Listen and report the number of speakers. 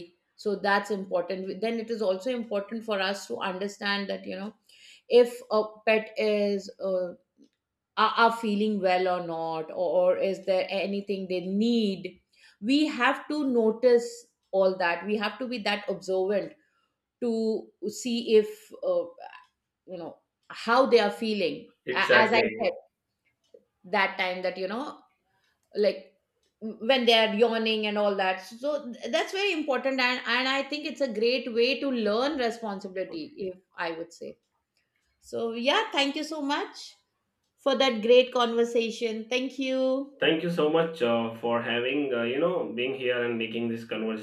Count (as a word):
two